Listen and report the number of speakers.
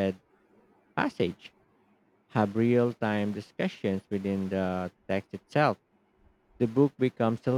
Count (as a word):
one